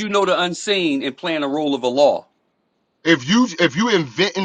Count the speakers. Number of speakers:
2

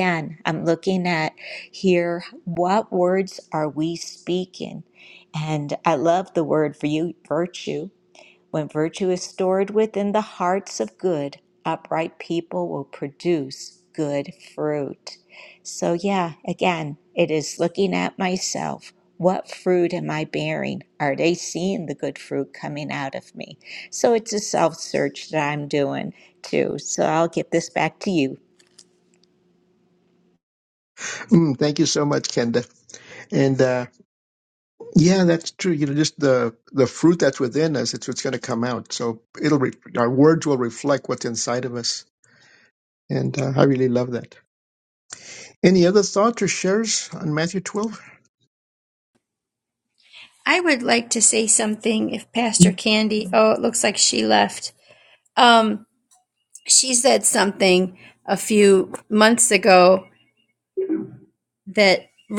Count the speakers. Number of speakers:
3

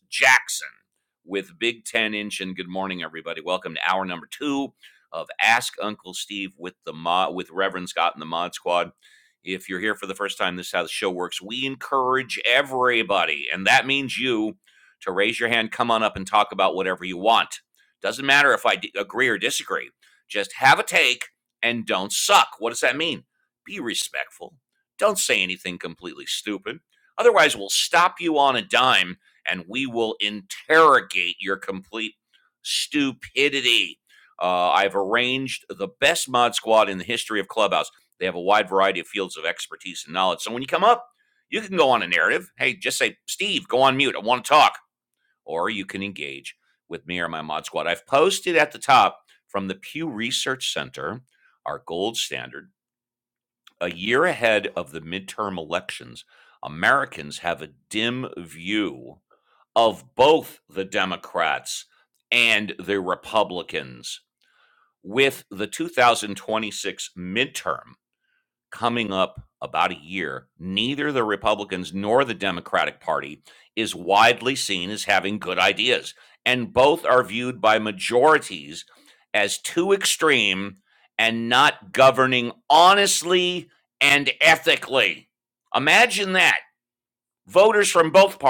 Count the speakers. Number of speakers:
1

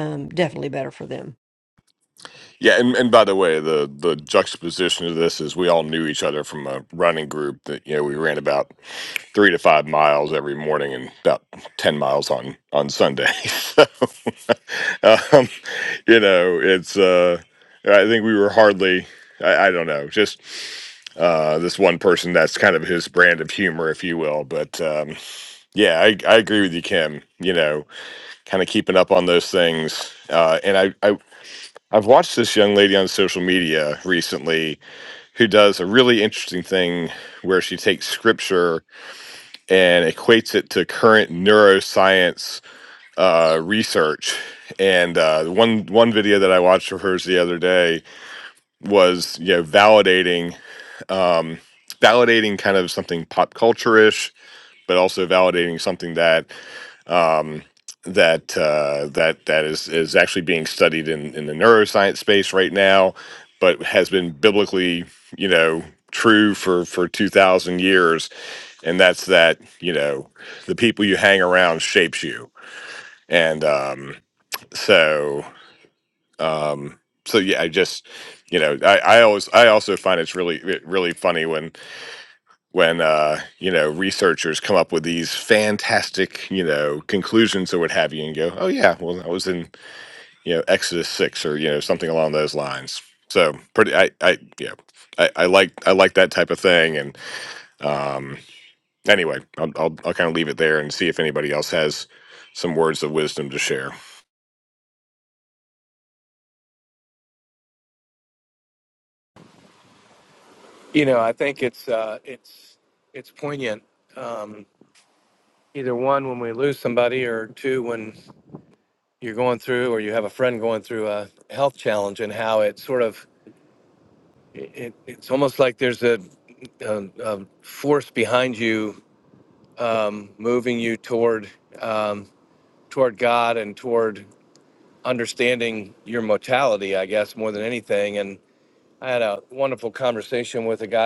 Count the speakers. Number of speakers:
3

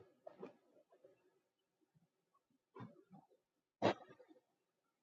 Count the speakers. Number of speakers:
0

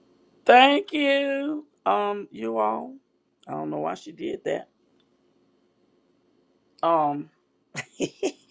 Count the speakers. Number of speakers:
1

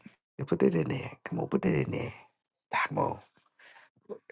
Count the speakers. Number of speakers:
1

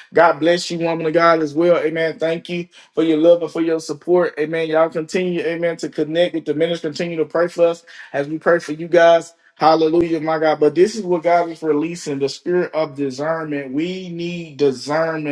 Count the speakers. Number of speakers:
1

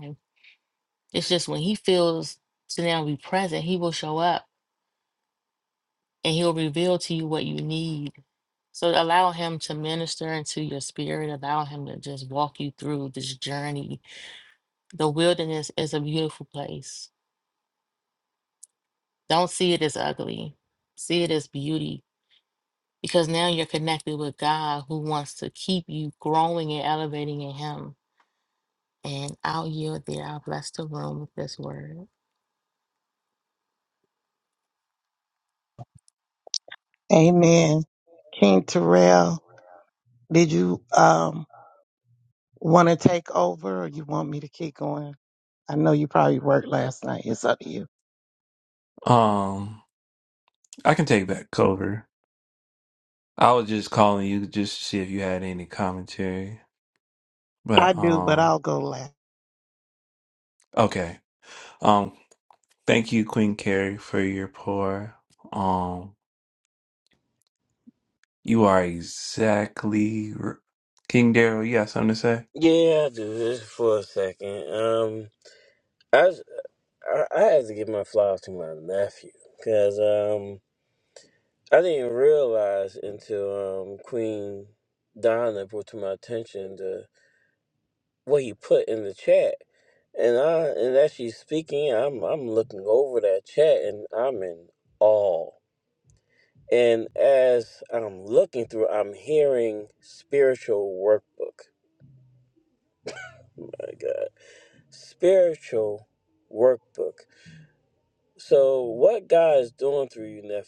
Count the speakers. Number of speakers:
4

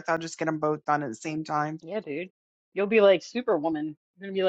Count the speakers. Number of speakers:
2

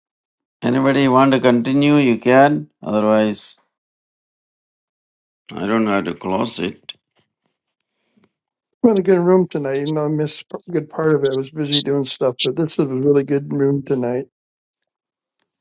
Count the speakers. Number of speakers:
2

